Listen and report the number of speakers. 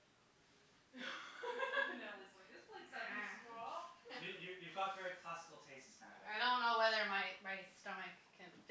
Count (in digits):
3